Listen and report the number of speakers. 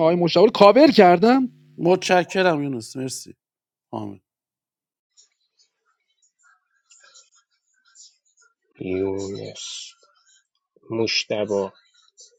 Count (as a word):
three